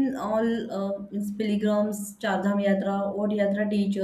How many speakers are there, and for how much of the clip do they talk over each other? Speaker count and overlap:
1, no overlap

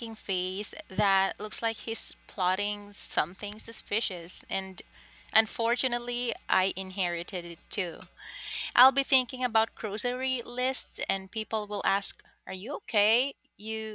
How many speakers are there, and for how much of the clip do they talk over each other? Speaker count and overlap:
1, no overlap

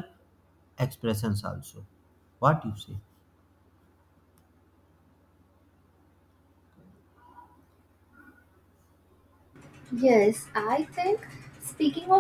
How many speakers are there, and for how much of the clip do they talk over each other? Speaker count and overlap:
2, no overlap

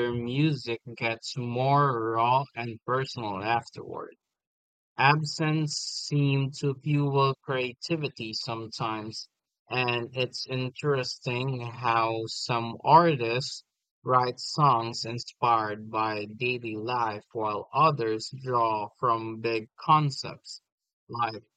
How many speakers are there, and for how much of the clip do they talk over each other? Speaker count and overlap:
1, no overlap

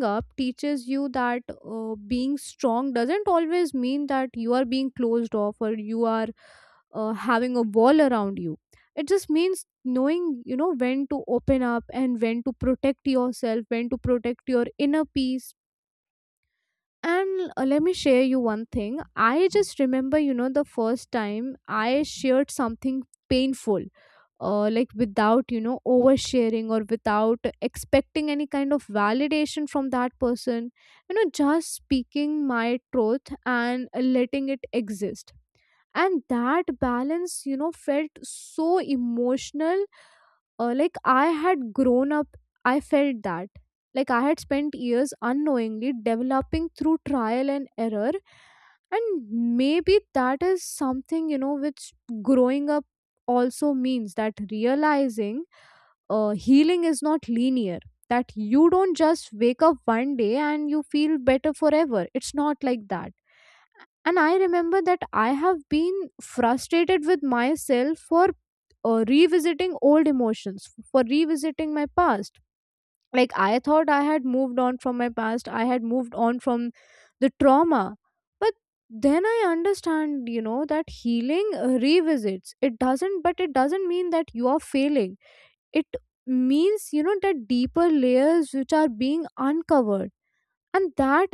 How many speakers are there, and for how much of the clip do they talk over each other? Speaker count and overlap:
1, no overlap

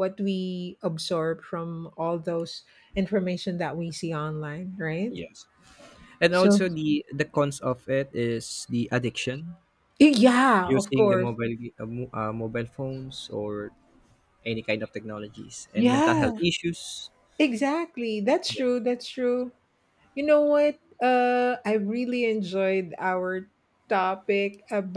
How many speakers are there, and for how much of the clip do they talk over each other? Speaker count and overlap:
2, about 7%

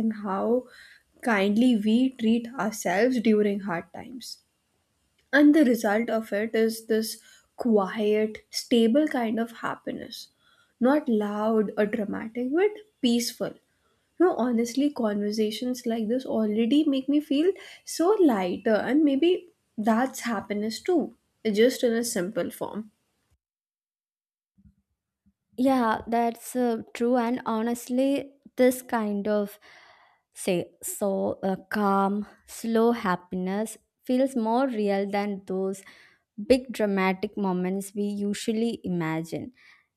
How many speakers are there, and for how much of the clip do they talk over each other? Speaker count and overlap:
2, no overlap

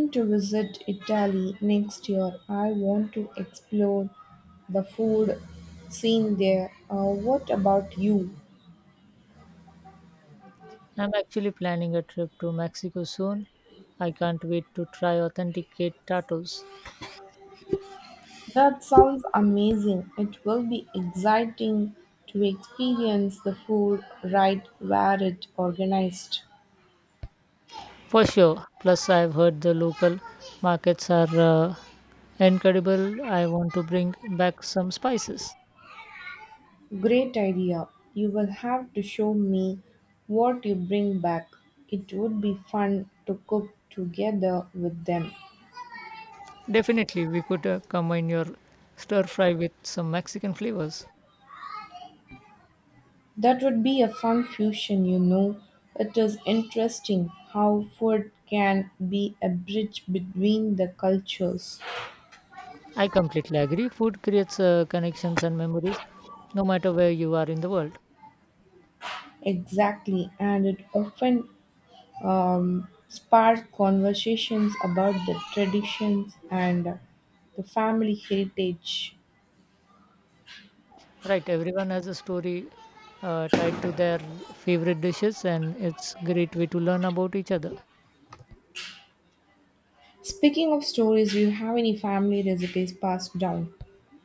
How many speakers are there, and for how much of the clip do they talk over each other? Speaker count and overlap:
2, no overlap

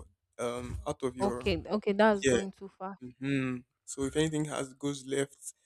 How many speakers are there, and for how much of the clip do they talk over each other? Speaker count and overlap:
2, about 9%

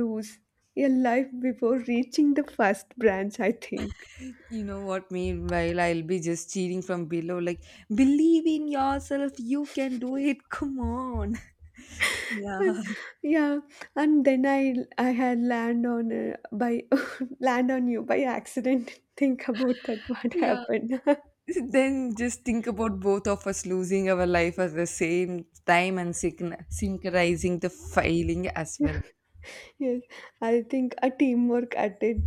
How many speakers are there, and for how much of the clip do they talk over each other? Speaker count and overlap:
2, about 1%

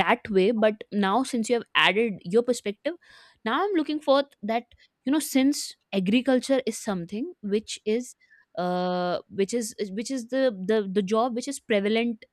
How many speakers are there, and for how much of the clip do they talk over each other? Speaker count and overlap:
1, no overlap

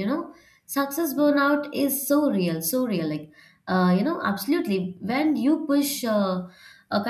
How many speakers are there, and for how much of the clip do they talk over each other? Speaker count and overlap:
1, no overlap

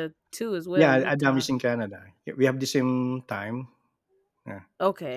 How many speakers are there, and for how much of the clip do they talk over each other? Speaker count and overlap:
2, about 14%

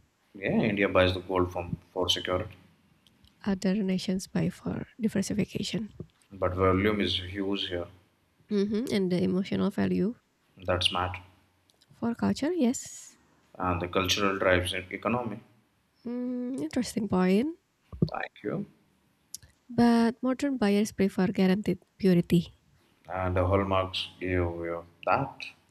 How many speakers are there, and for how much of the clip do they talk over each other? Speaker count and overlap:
2, no overlap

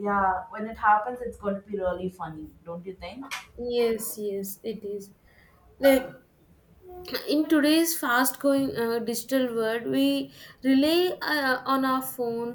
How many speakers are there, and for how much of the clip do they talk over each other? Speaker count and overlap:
2, no overlap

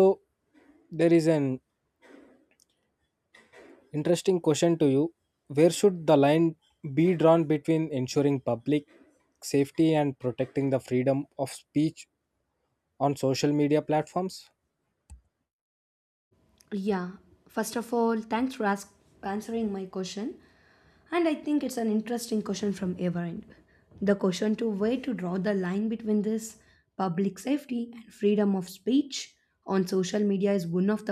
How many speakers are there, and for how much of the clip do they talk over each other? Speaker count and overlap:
2, no overlap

